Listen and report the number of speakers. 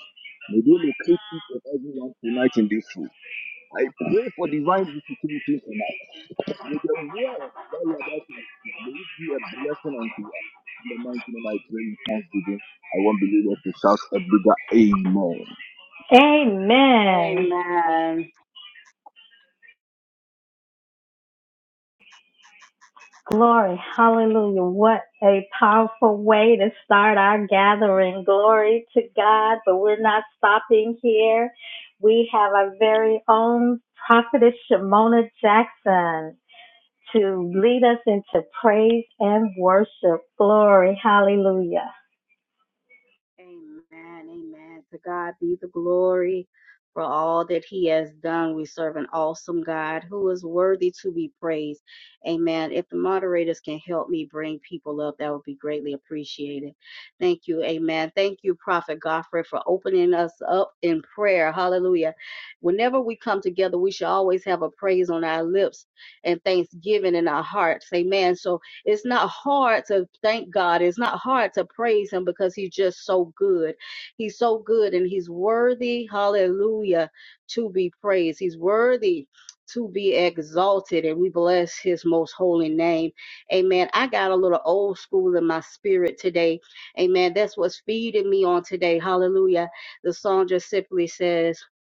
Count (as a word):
three